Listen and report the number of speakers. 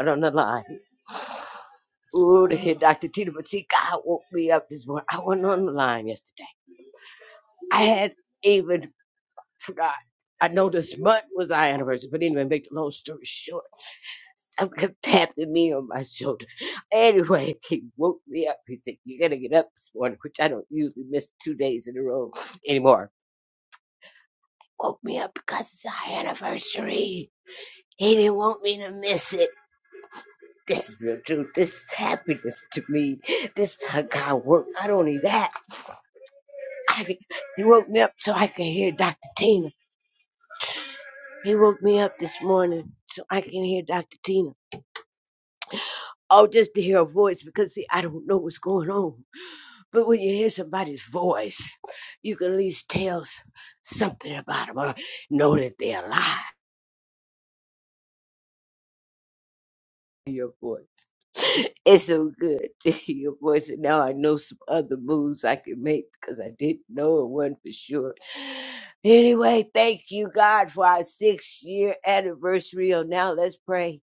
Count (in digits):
1